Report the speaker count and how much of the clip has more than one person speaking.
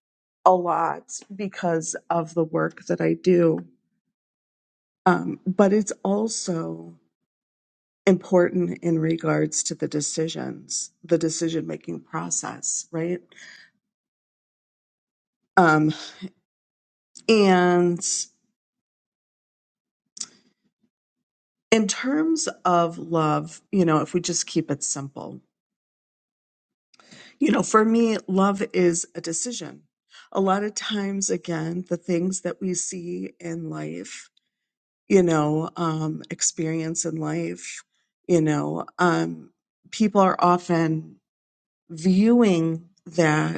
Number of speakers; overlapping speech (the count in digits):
1, no overlap